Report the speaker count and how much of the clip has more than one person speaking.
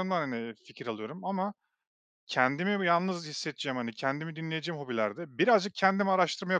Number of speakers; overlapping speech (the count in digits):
1, no overlap